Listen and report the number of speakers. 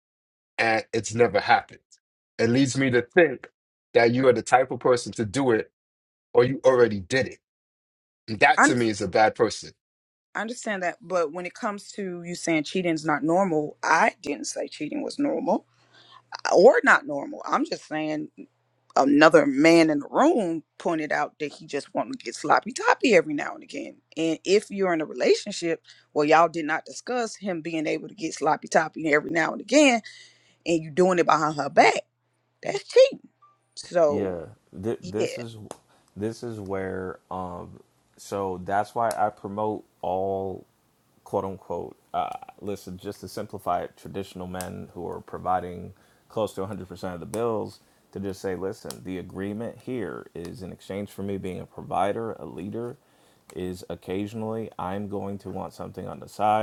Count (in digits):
3